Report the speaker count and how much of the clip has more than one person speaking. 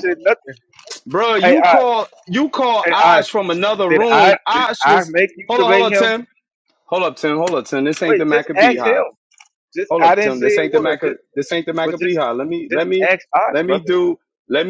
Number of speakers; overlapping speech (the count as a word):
two, about 40%